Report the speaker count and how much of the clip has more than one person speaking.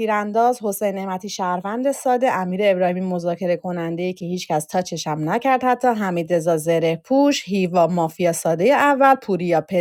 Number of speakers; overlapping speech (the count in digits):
1, no overlap